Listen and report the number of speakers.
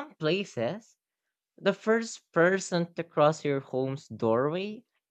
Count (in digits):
1